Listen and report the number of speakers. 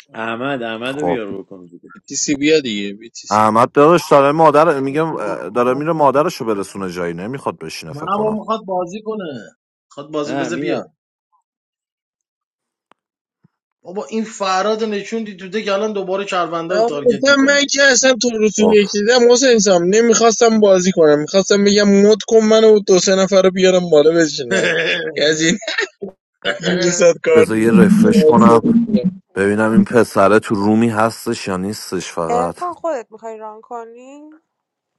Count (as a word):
five